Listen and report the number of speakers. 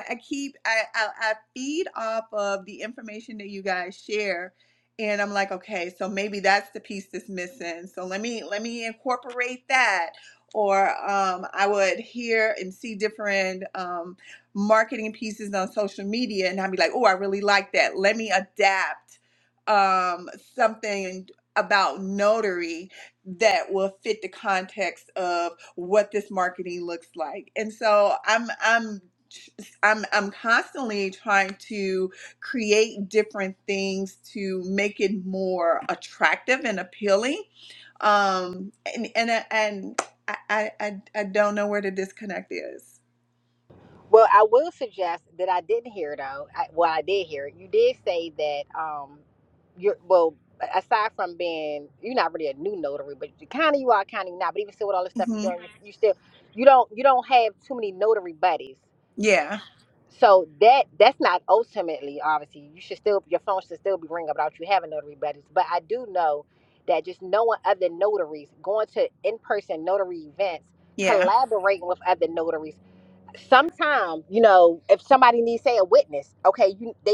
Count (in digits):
2